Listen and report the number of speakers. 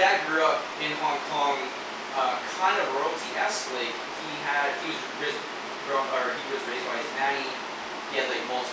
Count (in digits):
1